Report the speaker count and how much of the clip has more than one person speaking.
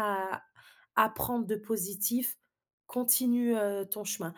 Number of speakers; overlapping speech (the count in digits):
1, no overlap